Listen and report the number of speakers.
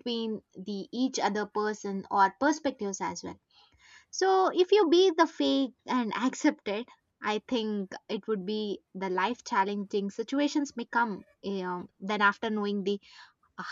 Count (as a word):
one